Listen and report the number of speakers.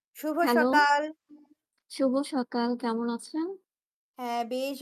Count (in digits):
2